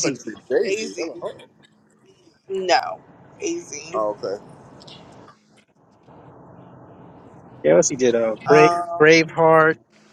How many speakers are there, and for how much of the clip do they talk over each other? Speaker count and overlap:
3, about 15%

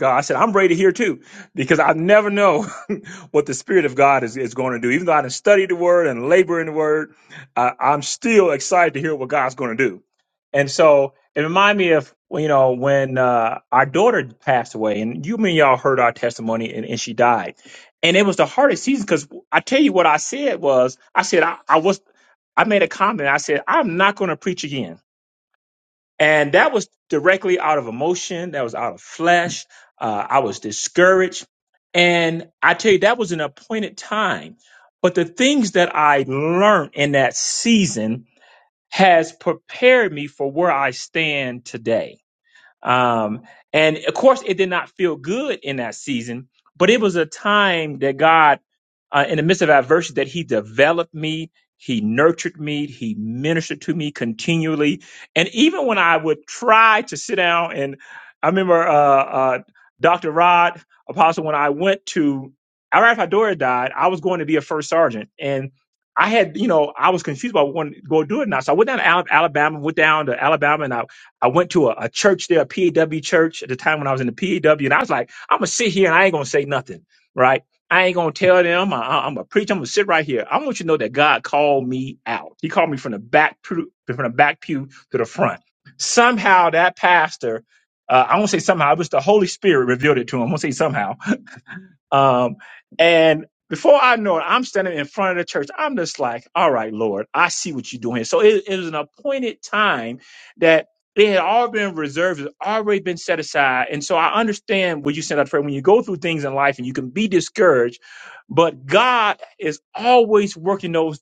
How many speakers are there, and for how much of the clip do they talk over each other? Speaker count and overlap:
1, no overlap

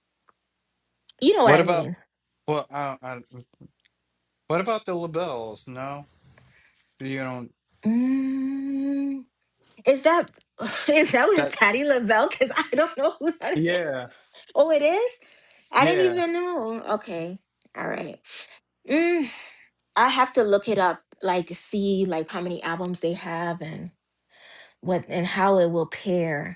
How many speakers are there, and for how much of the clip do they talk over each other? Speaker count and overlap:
2, about 5%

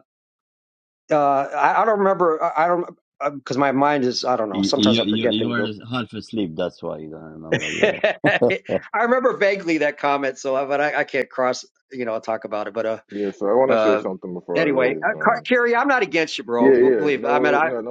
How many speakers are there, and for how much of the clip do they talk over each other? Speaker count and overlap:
3, about 21%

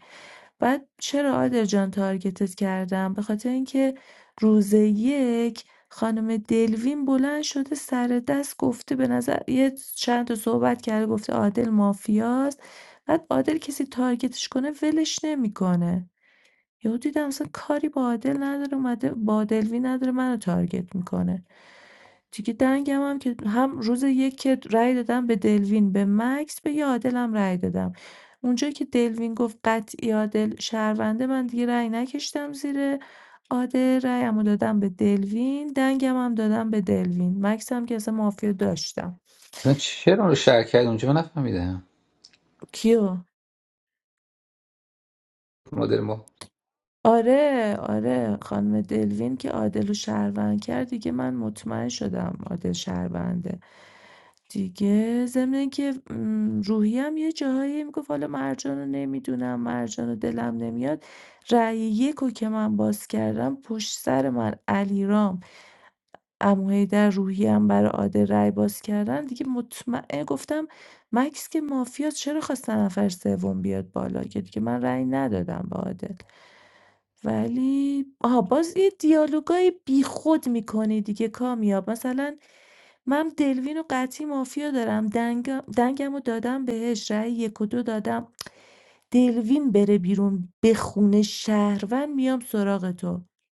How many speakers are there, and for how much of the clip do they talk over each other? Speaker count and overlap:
2, no overlap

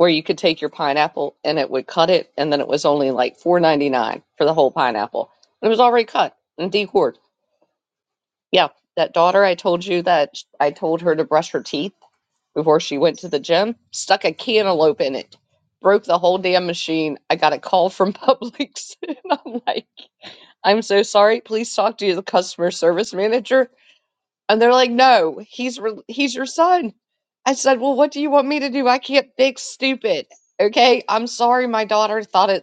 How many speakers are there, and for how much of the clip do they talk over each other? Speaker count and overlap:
1, no overlap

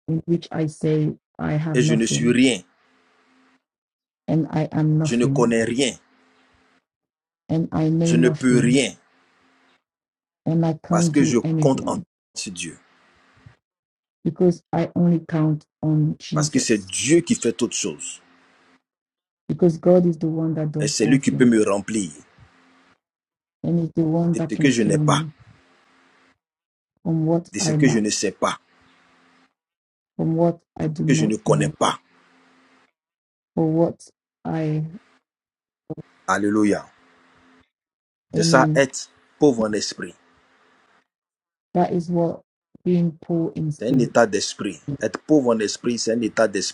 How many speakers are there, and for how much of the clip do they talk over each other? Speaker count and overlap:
2, about 15%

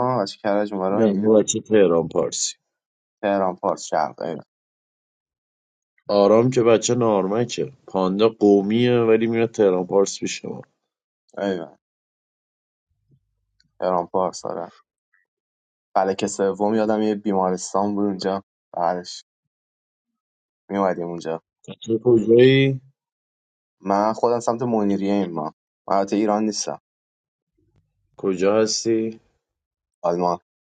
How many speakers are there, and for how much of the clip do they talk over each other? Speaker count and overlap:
2, about 1%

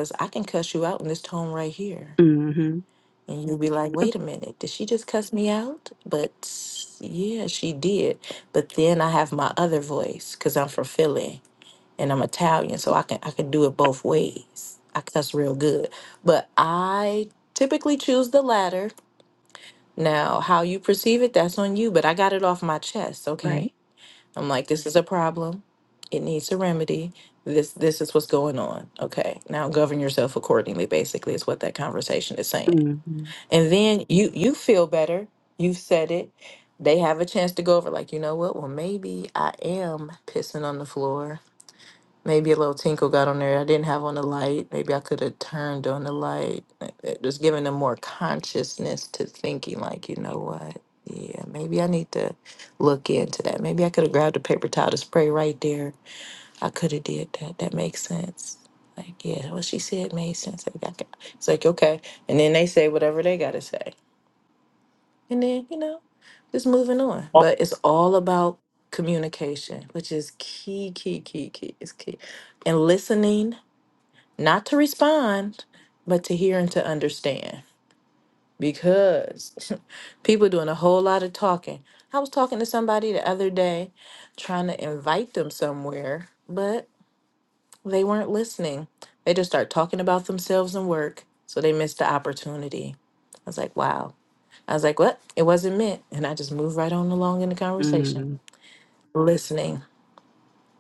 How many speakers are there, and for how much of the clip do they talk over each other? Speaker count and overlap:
2, about 1%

